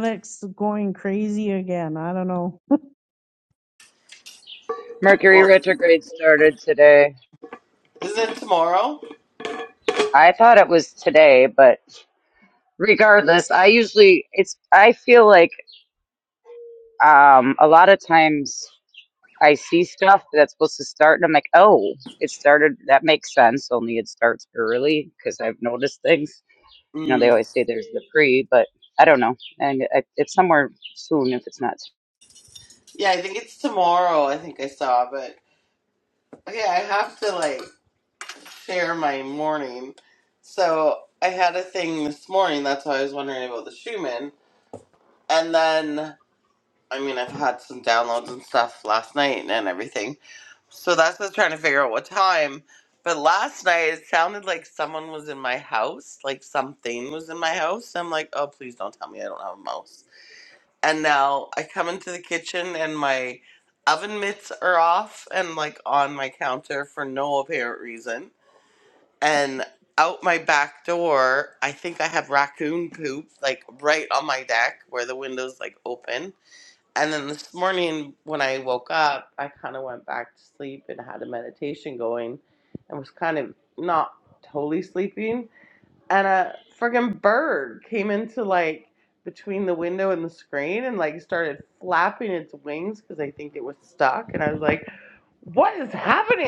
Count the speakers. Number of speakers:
3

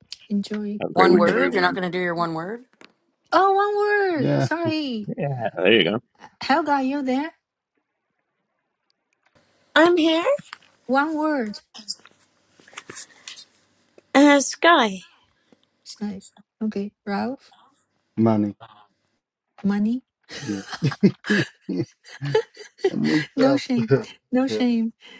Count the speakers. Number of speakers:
5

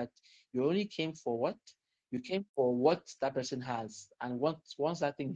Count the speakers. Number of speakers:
1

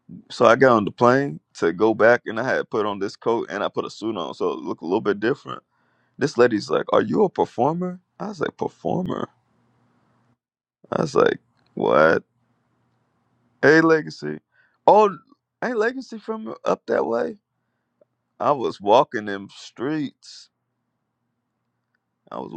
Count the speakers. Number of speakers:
1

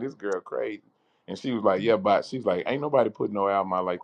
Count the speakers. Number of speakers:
1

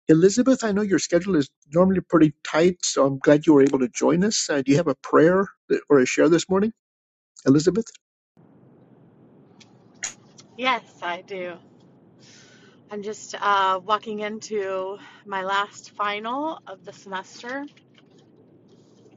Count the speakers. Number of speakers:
2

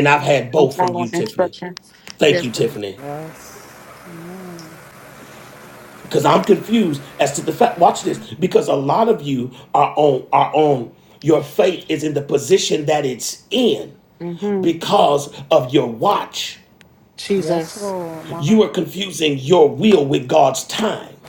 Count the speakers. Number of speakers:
3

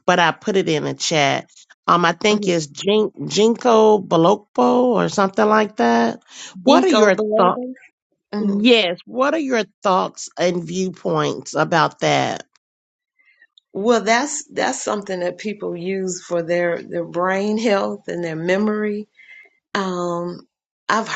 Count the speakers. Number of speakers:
2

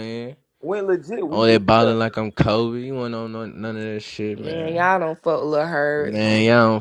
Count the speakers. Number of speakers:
3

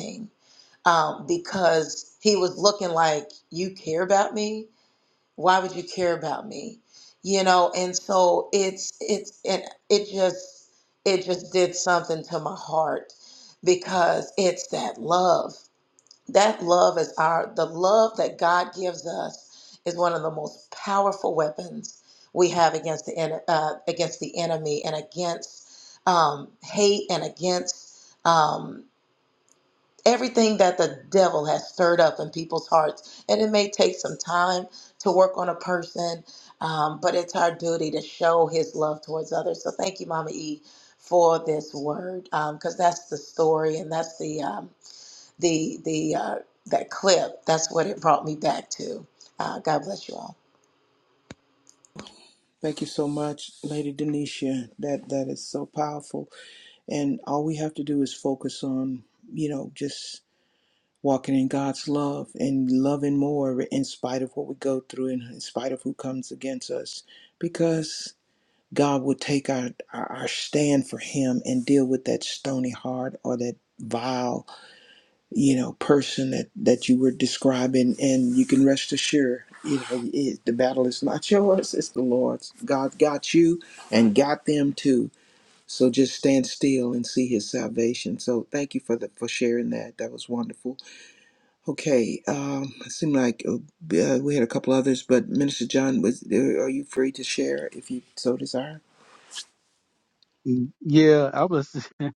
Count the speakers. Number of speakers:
3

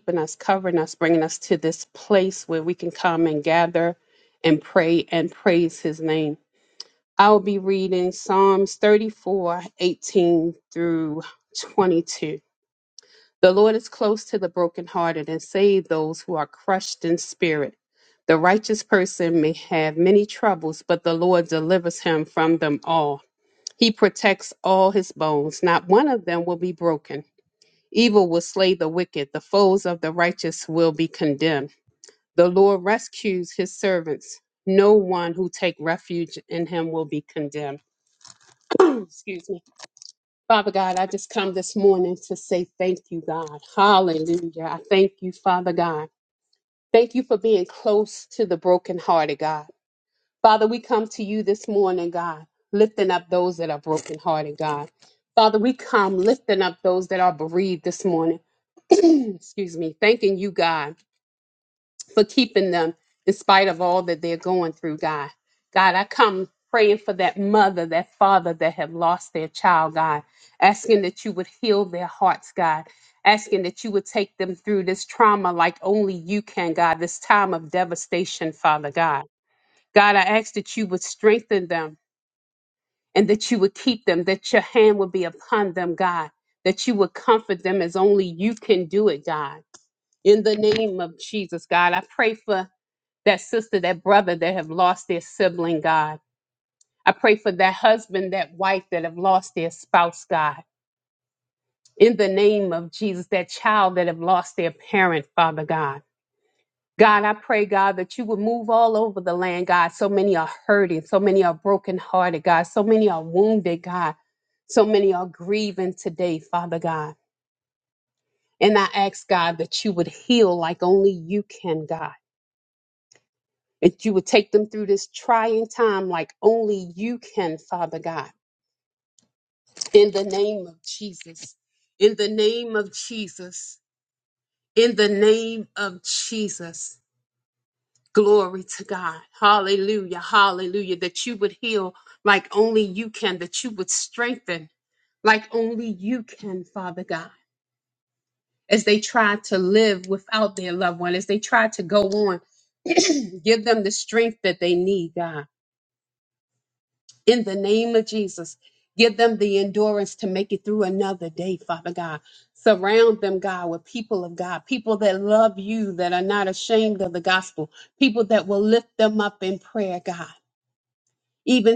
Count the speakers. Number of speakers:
1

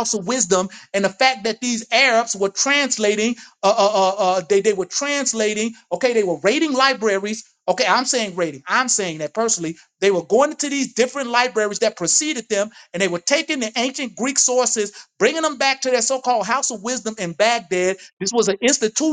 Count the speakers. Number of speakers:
1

